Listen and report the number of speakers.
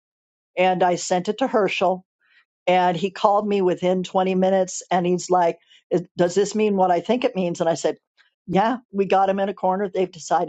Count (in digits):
1